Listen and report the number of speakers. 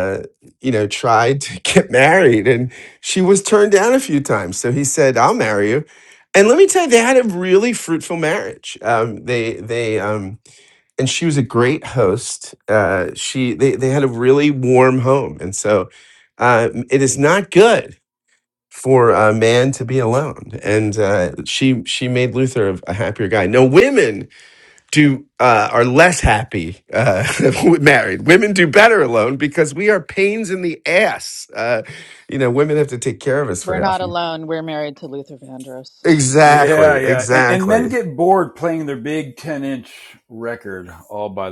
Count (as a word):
three